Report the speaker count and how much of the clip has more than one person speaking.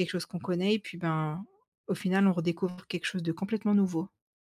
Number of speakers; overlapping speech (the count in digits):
1, no overlap